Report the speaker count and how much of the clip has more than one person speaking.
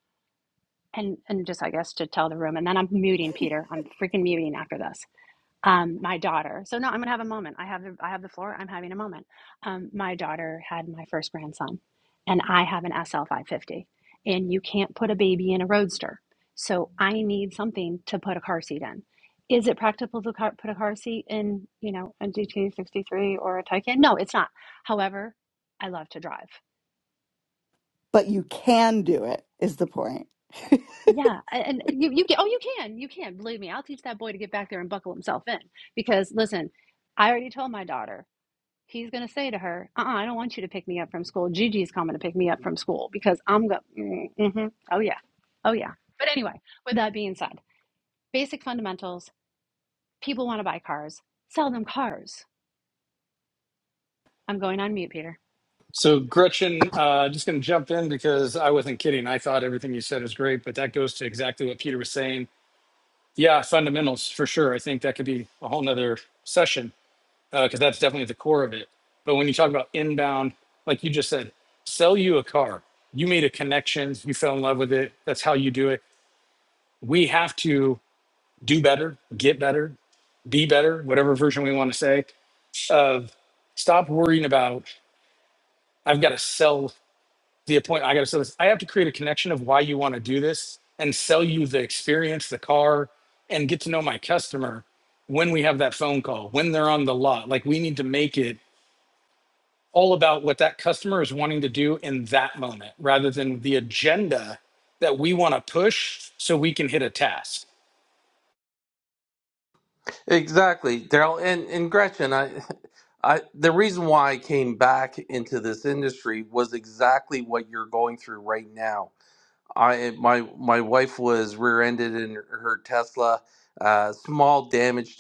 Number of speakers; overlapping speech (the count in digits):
4, no overlap